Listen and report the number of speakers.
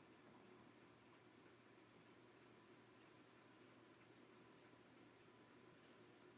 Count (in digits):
0